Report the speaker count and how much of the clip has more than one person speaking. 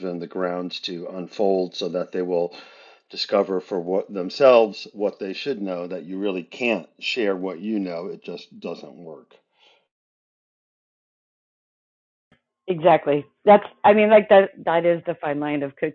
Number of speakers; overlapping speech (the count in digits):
2, no overlap